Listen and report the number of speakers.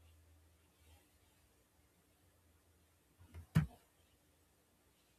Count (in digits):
0